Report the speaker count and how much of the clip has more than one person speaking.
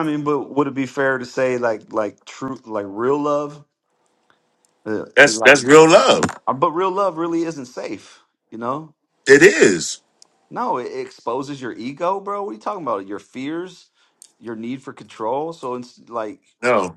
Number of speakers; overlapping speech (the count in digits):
2, no overlap